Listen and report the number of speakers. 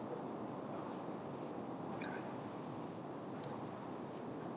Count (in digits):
0